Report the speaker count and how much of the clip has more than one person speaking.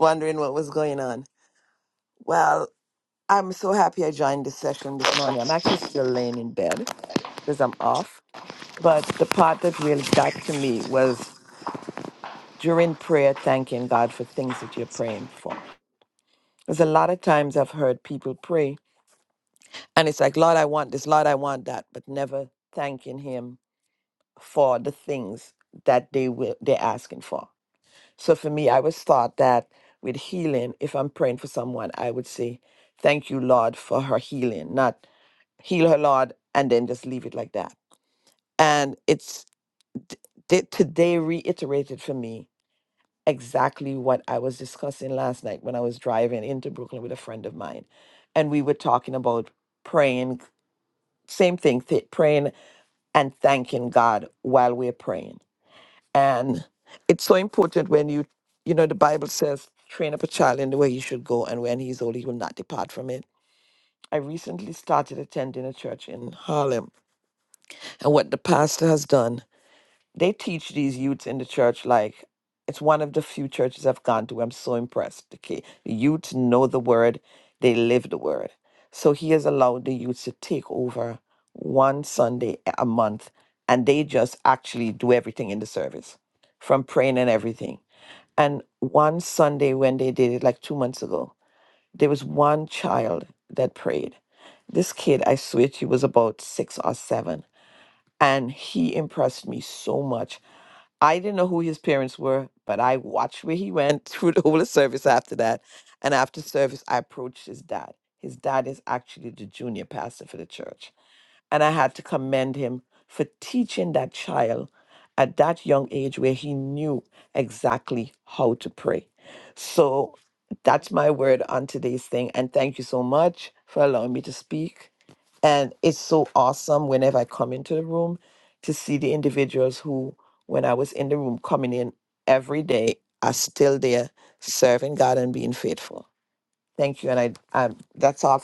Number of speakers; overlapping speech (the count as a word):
one, no overlap